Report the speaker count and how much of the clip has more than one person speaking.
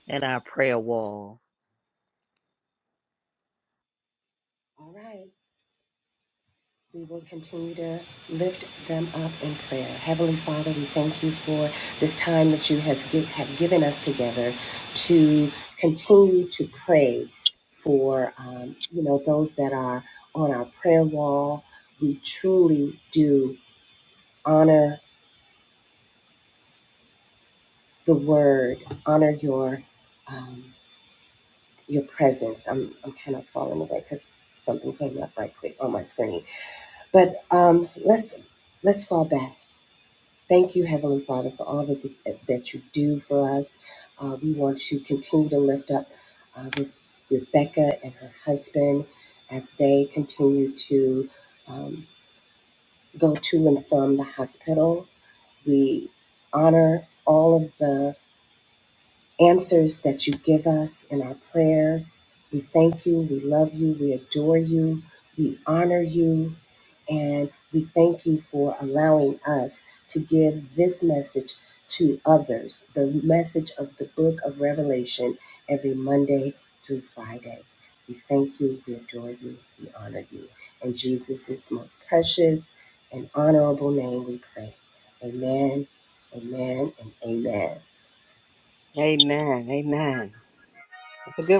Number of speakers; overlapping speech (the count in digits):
3, no overlap